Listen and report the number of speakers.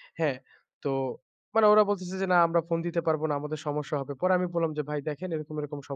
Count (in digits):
1